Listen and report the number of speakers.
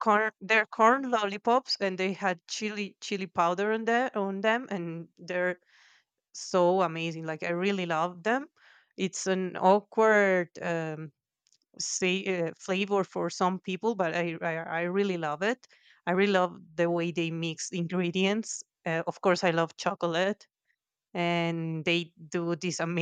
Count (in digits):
1